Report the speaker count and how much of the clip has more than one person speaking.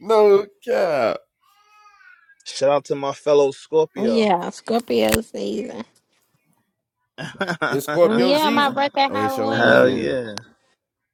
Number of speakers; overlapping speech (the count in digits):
3, about 18%